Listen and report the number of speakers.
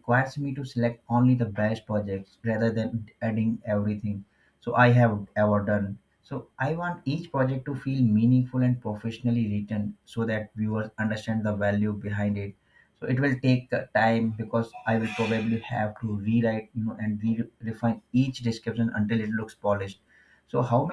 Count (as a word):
one